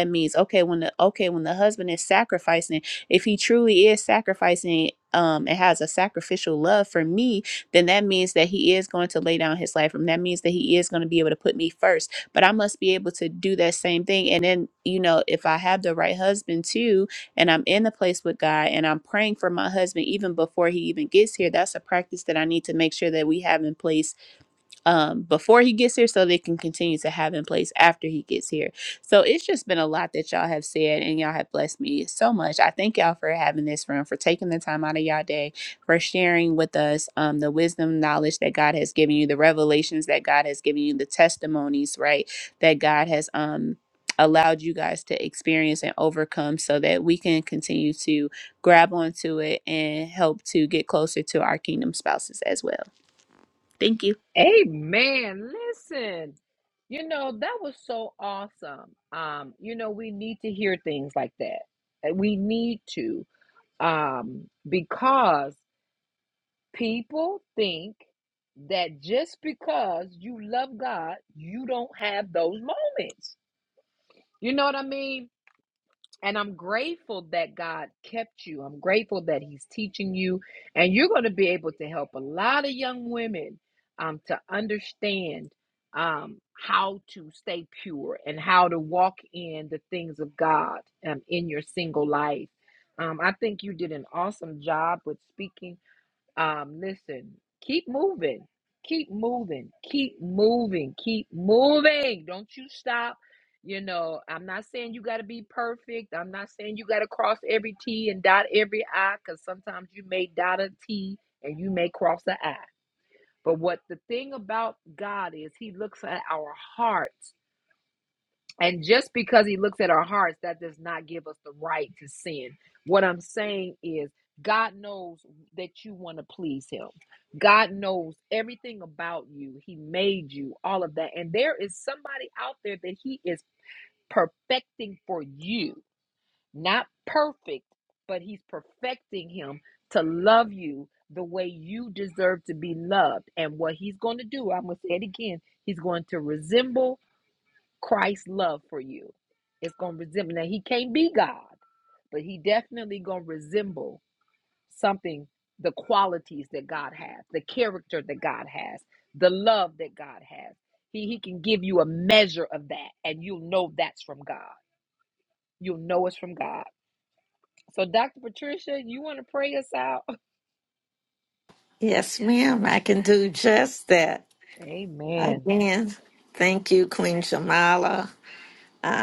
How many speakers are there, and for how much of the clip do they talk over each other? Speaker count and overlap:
three, under 1%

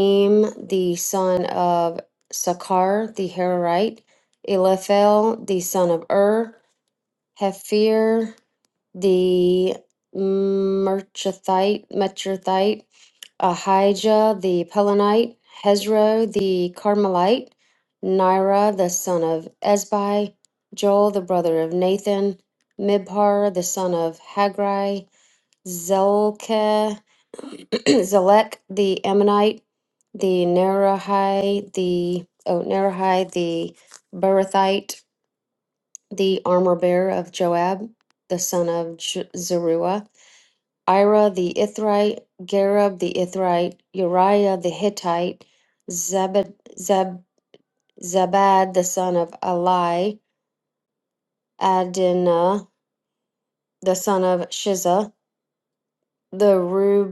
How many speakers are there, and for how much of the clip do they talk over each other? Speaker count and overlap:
one, no overlap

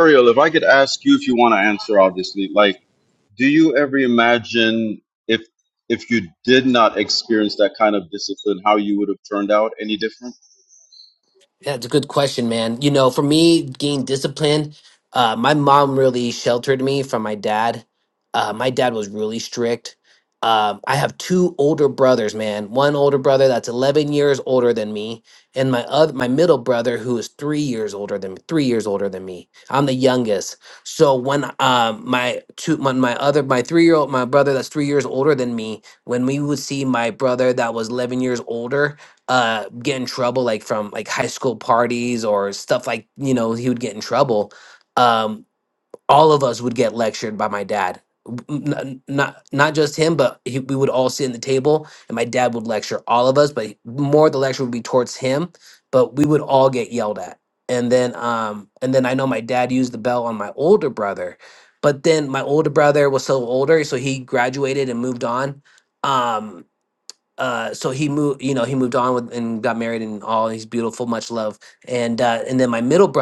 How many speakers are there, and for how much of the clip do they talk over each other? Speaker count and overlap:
two, no overlap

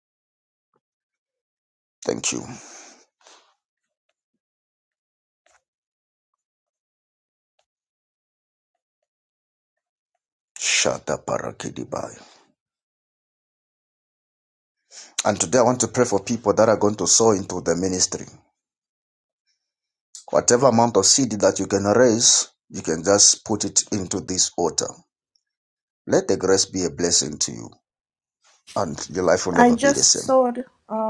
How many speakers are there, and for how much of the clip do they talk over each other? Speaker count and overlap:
two, about 2%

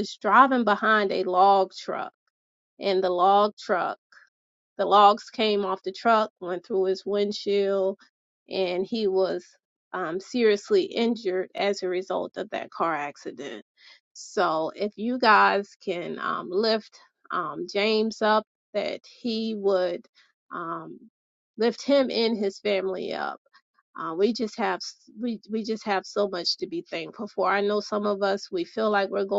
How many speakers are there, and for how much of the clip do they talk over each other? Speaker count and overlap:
one, no overlap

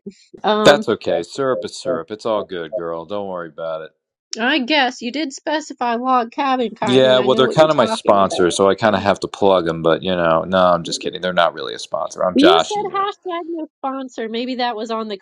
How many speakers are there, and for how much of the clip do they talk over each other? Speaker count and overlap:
two, about 17%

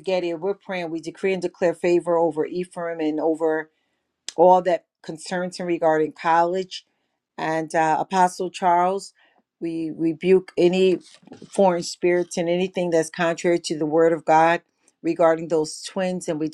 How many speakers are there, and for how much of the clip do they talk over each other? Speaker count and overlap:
one, no overlap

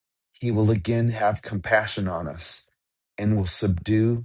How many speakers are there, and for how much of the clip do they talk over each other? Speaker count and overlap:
one, no overlap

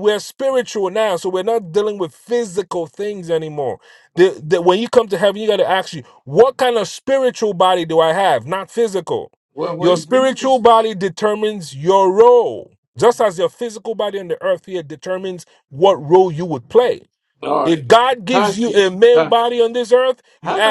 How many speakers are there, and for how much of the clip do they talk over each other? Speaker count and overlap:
two, about 9%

